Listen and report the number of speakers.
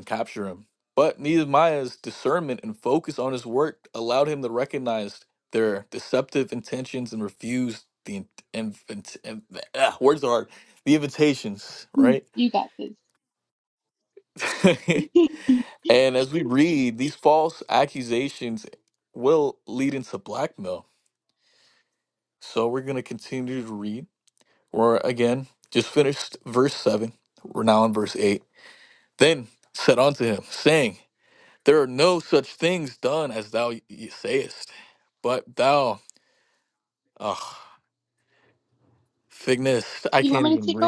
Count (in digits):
2